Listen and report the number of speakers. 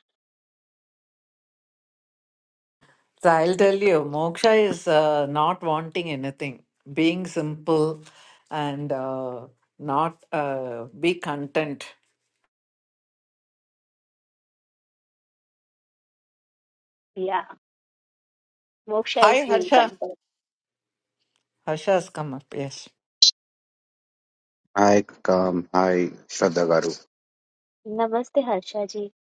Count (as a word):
three